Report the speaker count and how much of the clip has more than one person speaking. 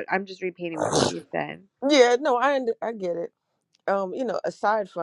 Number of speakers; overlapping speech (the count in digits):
2, no overlap